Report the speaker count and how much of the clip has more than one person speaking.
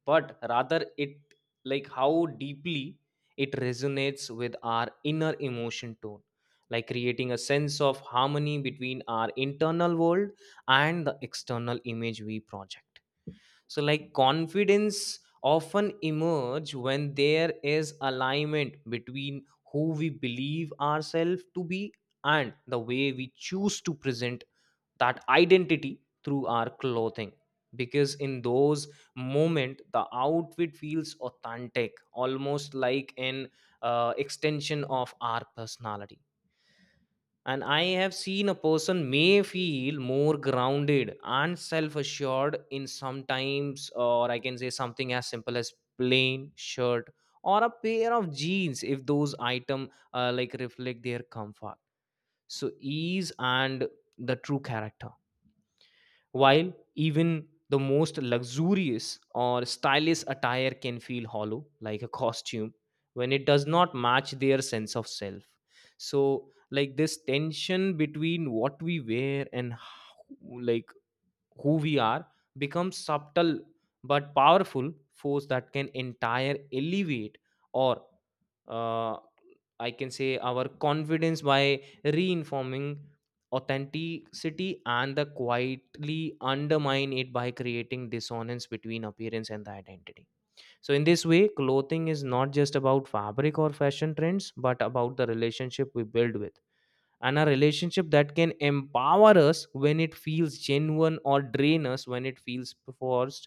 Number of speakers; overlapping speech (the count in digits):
1, no overlap